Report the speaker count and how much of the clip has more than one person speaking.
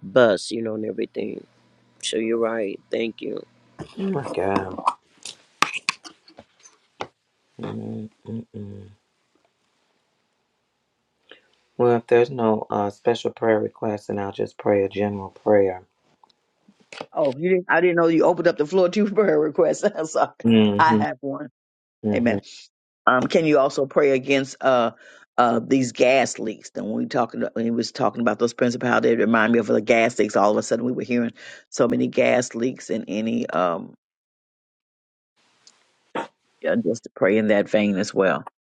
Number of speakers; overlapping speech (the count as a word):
three, about 1%